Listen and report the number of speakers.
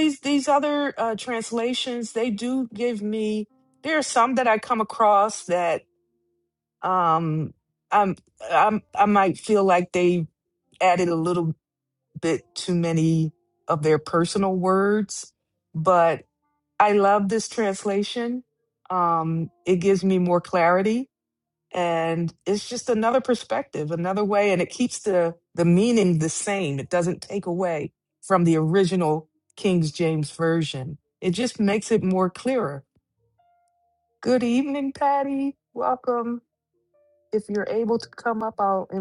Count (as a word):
one